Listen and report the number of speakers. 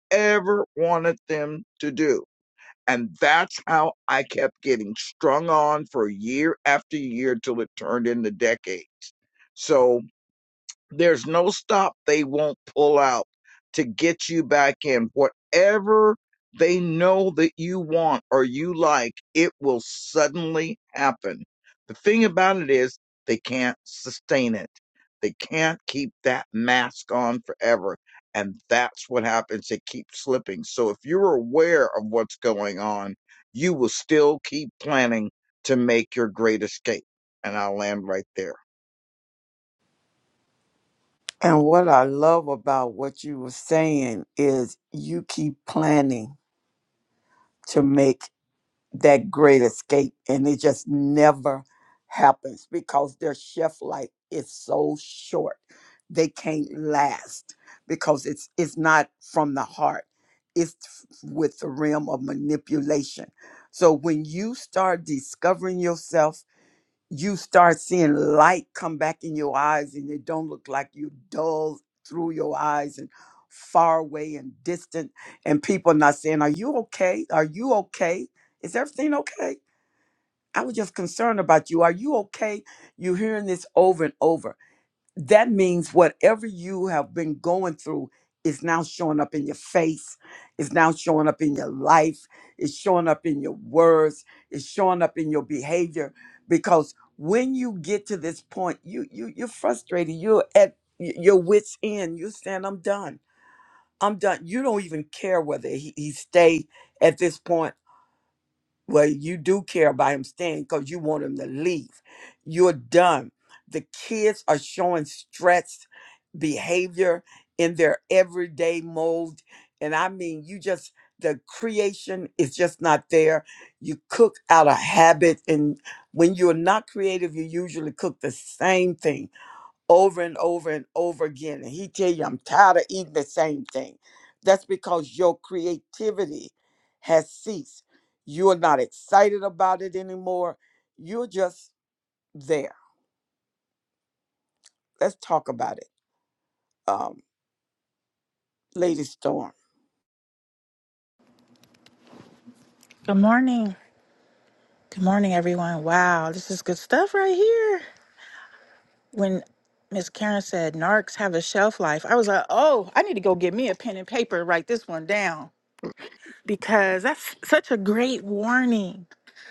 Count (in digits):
3